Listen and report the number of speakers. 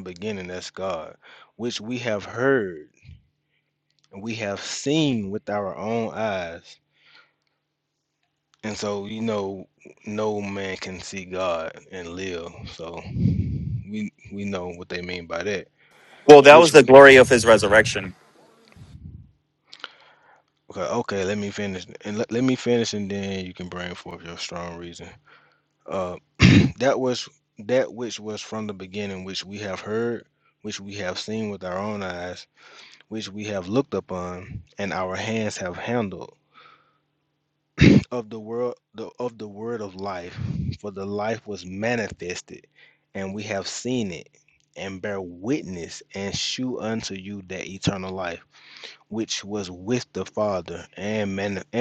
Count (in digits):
2